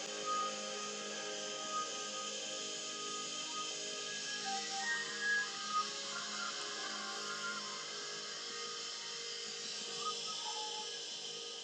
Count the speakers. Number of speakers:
0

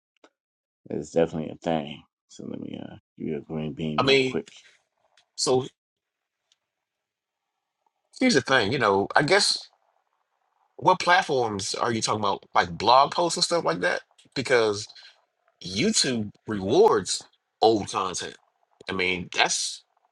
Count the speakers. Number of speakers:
2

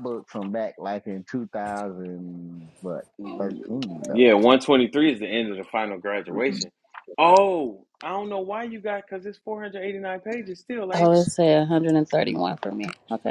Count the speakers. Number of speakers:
3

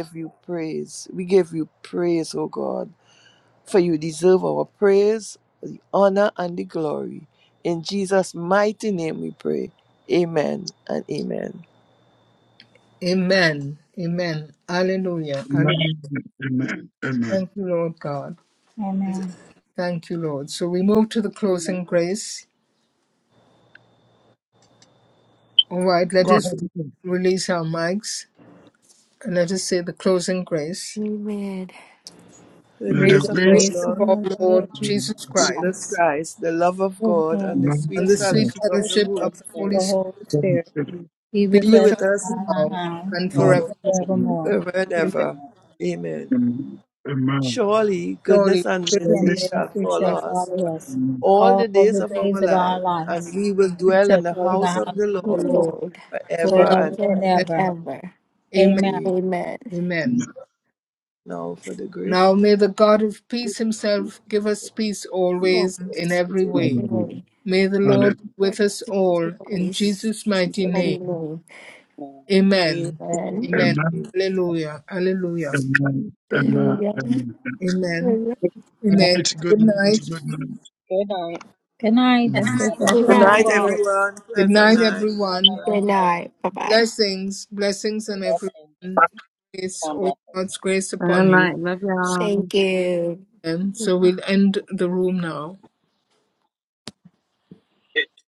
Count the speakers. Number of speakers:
7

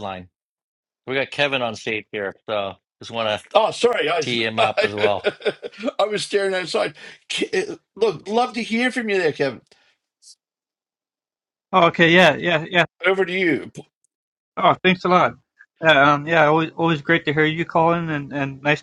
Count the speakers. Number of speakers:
3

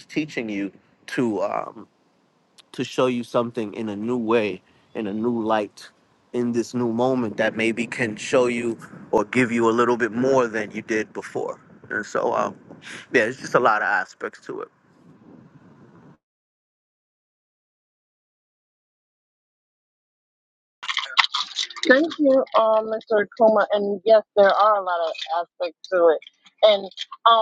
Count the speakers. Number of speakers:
2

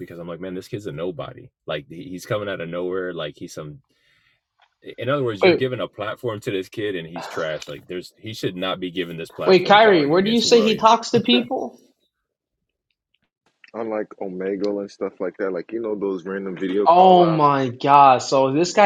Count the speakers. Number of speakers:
3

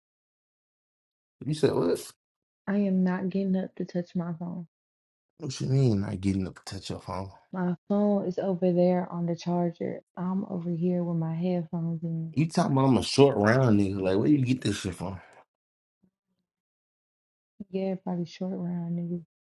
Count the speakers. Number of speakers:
2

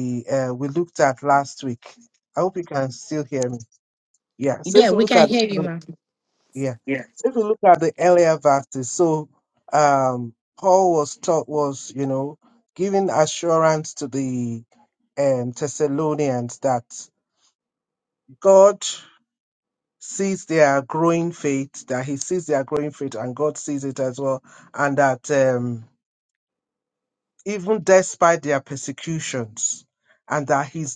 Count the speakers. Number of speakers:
2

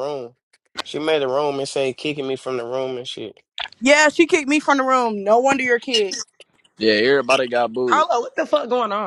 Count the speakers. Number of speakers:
4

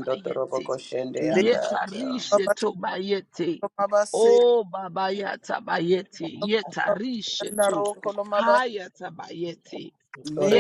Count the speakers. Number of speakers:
3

